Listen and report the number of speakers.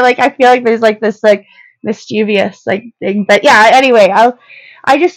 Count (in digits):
1